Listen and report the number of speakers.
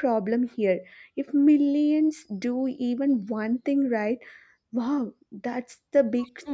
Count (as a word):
one